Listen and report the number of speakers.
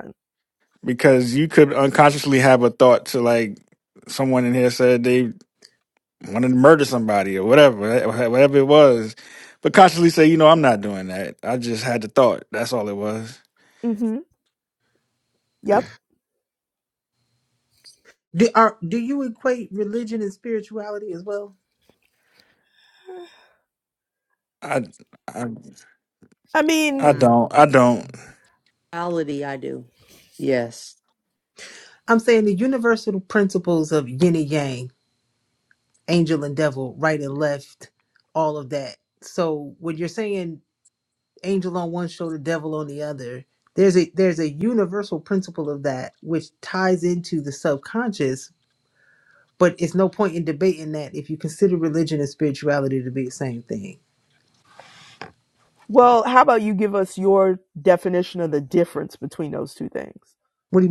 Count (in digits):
4